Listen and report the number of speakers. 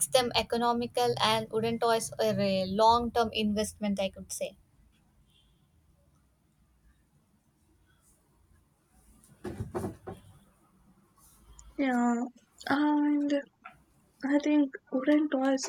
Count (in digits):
2